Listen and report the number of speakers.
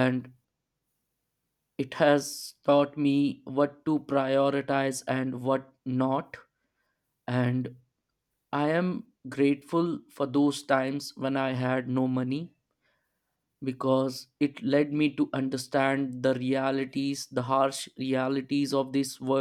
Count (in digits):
1